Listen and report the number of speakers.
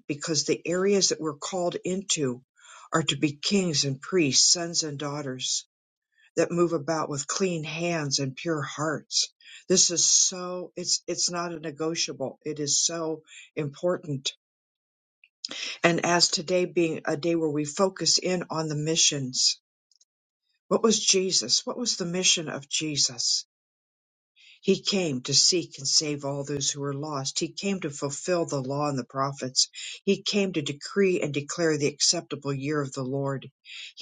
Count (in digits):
1